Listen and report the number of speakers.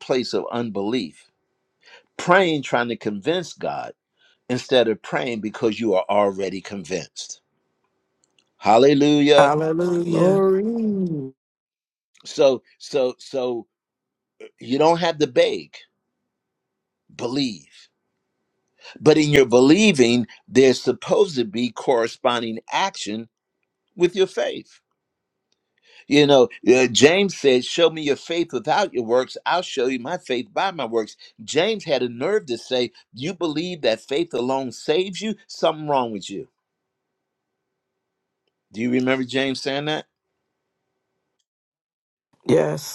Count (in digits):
3